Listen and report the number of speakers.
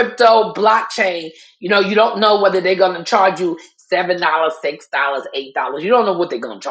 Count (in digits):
1